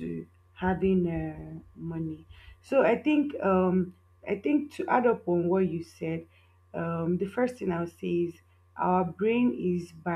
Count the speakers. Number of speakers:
one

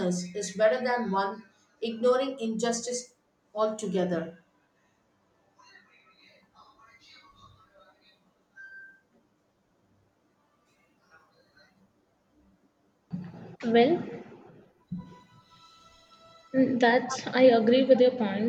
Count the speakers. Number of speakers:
two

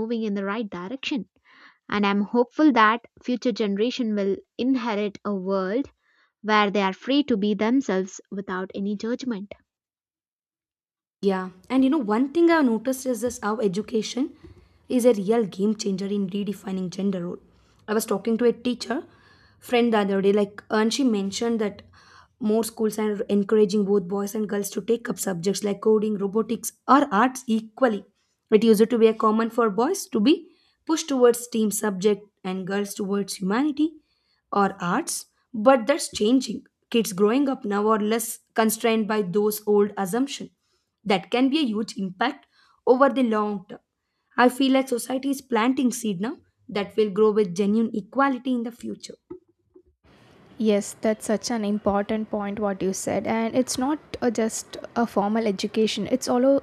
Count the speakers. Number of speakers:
three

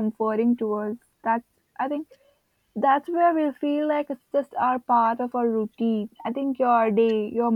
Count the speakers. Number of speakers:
one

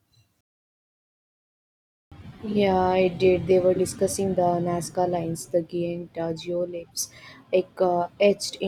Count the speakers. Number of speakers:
one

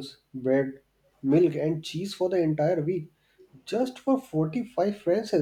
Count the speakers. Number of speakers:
one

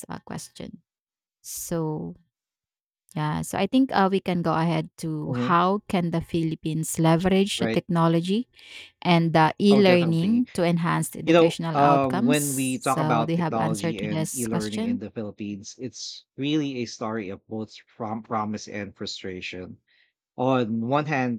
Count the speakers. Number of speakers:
two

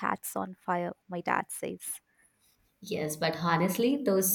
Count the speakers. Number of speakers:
two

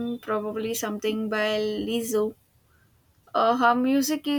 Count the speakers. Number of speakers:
one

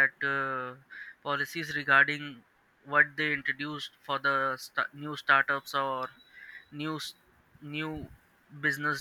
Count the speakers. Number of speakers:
one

